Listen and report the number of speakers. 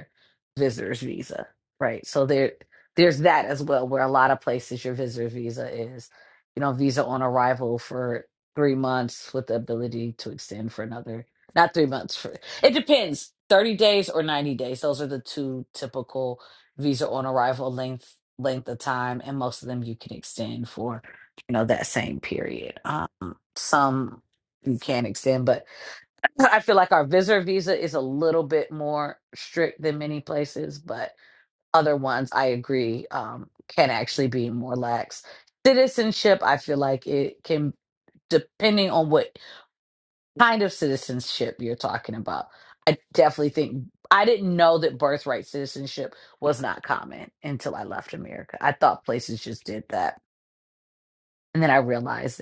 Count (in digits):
1